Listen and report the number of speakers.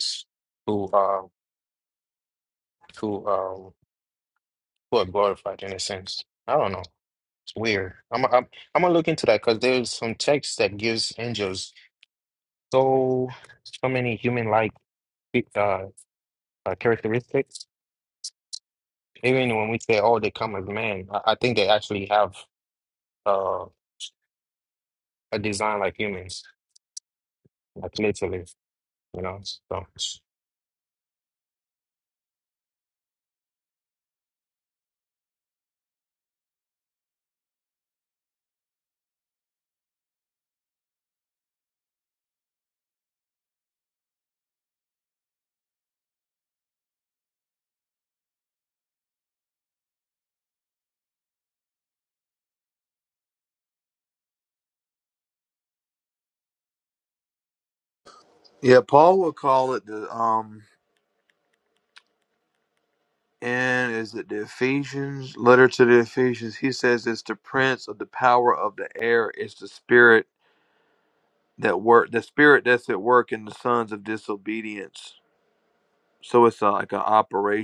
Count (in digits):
2